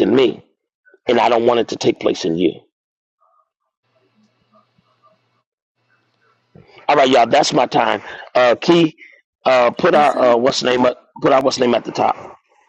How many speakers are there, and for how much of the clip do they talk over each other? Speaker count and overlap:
1, no overlap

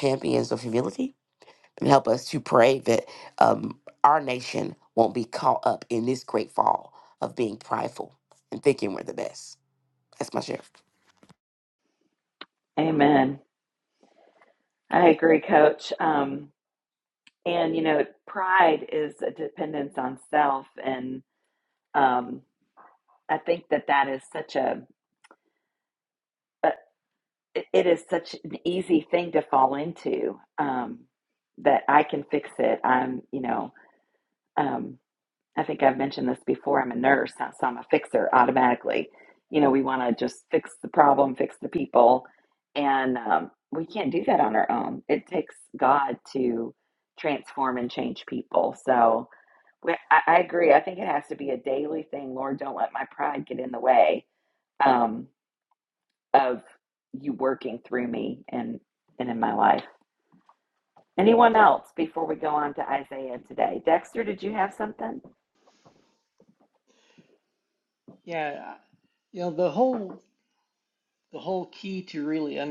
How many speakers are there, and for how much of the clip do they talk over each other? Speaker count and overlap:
3, no overlap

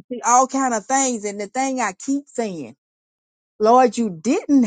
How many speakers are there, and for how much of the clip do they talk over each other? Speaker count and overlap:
1, no overlap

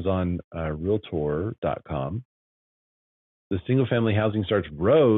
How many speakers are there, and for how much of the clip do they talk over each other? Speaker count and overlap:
1, no overlap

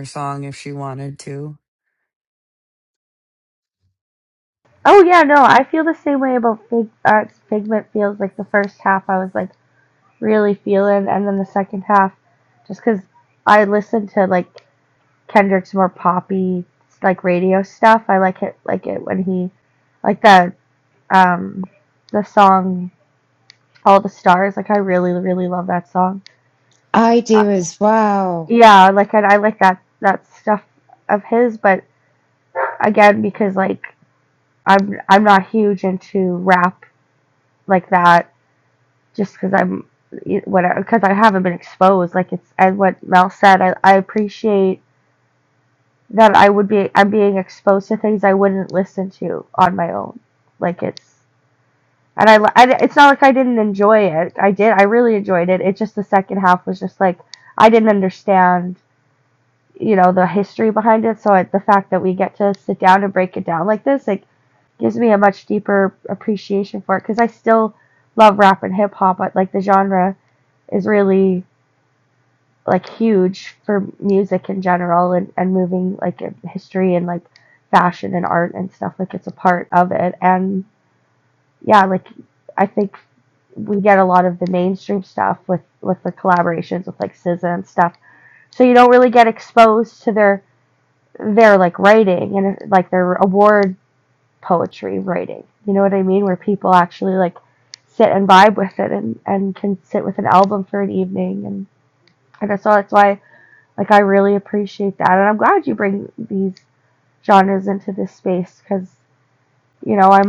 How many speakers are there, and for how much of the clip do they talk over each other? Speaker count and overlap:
3, under 1%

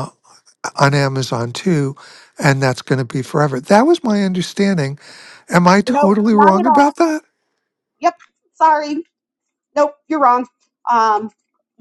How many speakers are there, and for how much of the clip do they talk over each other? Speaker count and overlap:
2, about 9%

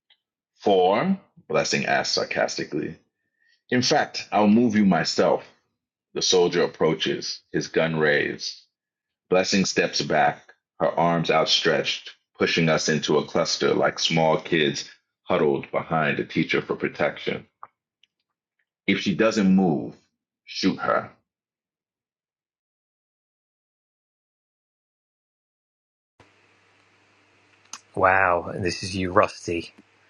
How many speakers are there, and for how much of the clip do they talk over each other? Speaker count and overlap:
2, no overlap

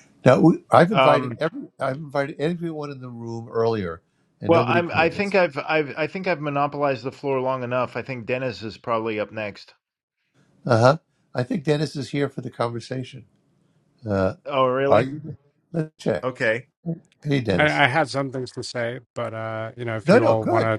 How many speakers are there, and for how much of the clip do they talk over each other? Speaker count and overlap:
3, about 10%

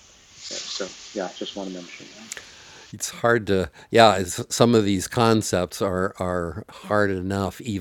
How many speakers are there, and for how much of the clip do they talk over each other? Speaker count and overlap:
2, no overlap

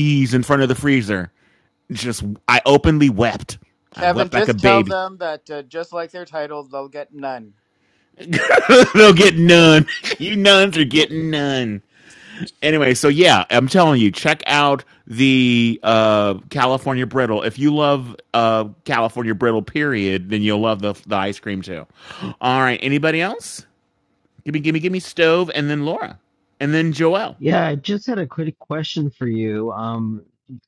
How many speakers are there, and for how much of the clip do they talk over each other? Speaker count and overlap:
3, about 3%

